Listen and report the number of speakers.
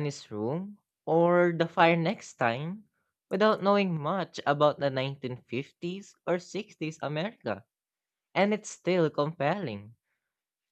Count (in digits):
1